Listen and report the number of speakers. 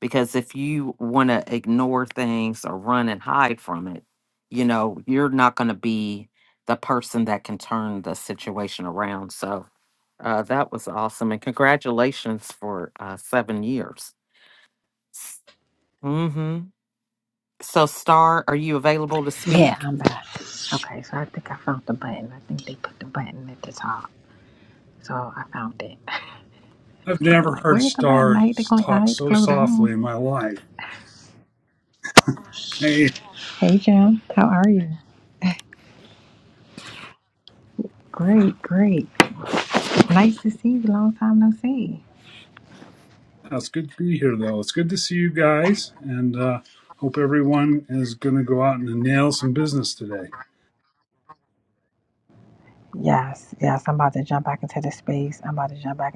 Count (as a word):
three